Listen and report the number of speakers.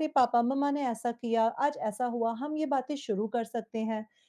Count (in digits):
1